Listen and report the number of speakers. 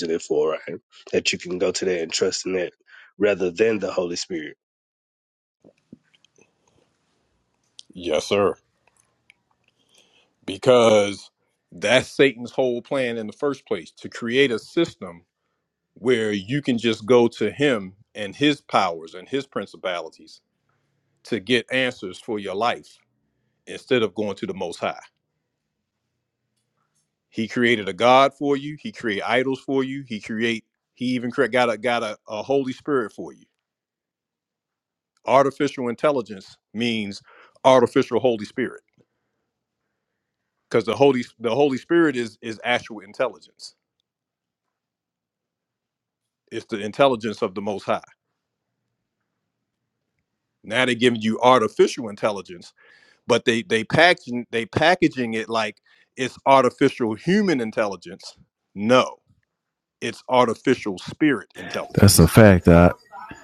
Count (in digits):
3